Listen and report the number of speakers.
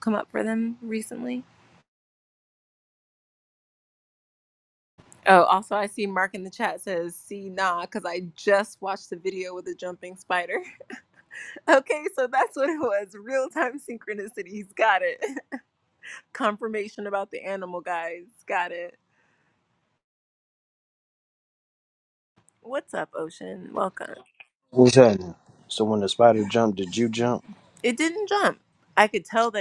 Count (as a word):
two